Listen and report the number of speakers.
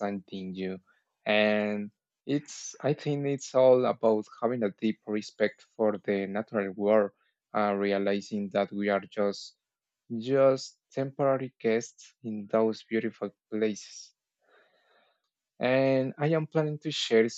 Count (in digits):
1